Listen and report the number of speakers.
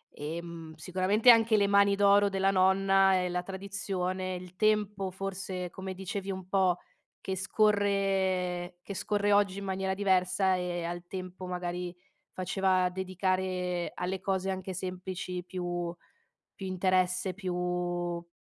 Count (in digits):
1